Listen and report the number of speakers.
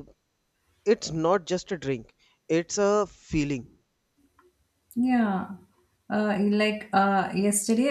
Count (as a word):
two